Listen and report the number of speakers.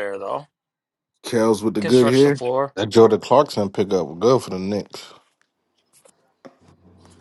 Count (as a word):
three